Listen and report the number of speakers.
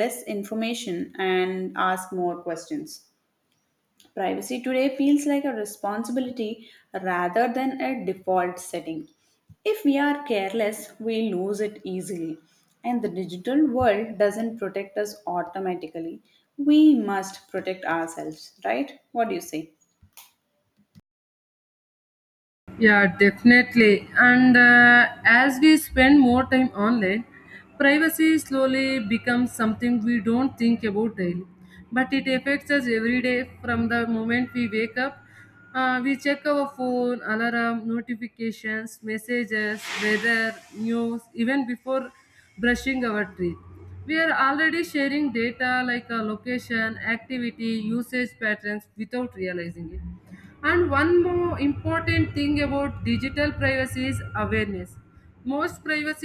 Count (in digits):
2